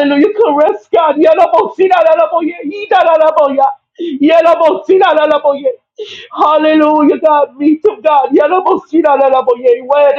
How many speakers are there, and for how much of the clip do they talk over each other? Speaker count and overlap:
1, no overlap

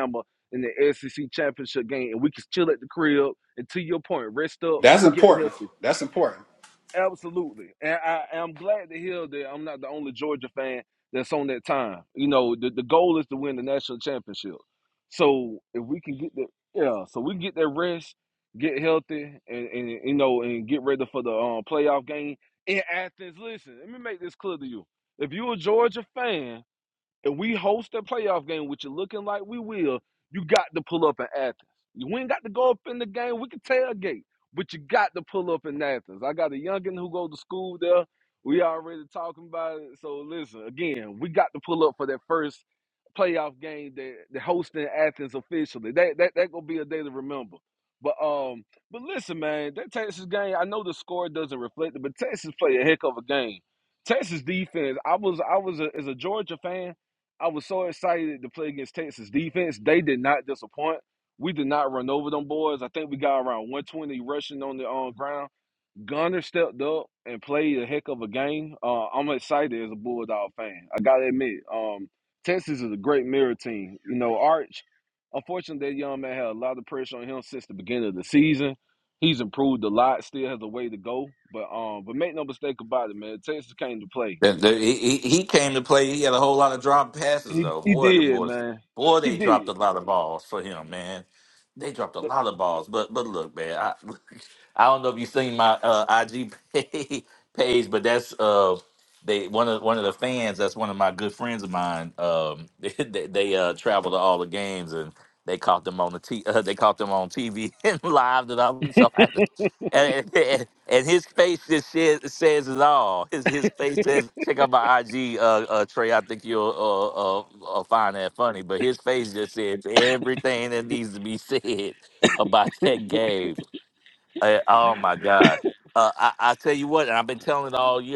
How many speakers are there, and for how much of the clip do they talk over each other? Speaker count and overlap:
3, about 2%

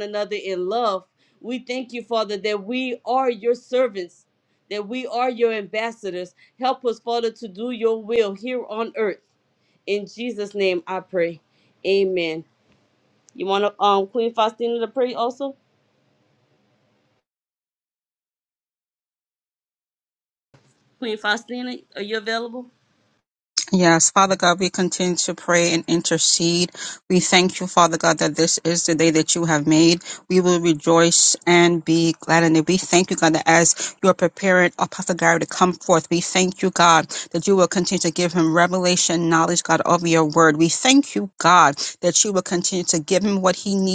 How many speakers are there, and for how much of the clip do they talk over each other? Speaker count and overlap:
2, no overlap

